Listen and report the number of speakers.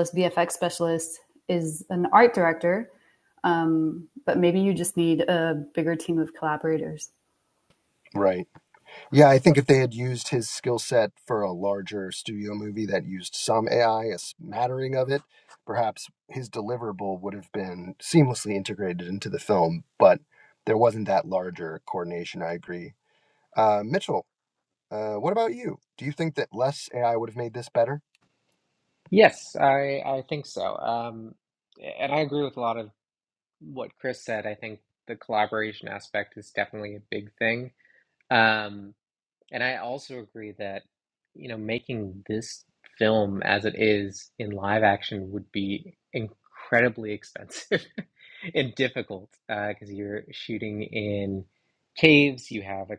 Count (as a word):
three